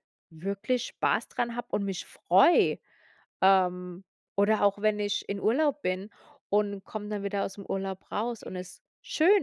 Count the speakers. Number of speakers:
1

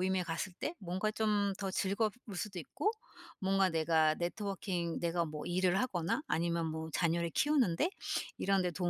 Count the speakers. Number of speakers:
1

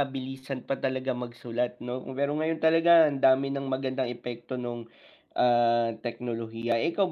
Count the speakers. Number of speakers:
1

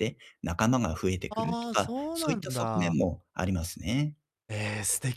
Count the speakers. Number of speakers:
2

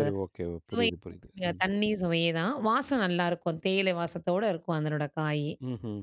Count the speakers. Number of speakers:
2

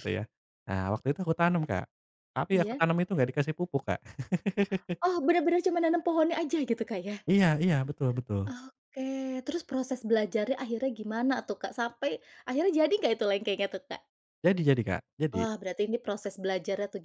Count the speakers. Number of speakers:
2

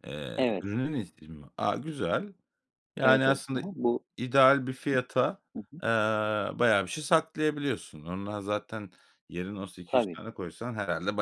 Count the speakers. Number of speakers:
2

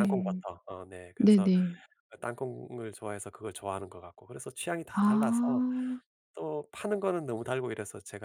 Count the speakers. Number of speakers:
2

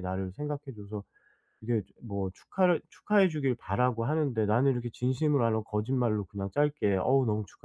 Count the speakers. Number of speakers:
1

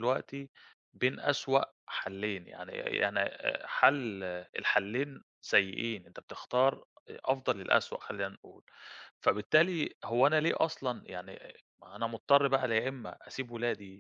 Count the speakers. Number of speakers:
1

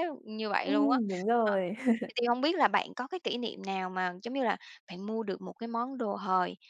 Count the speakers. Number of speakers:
2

